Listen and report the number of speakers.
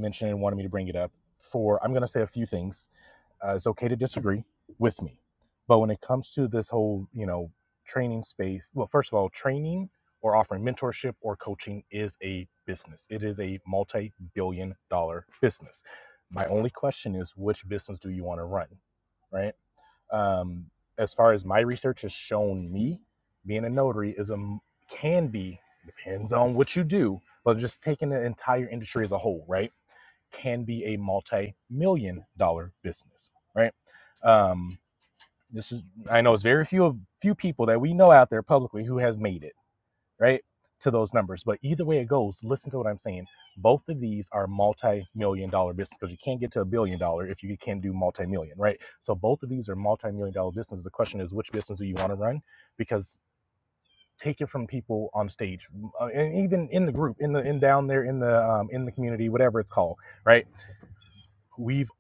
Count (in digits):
1